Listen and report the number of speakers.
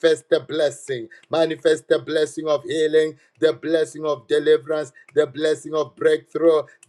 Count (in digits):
1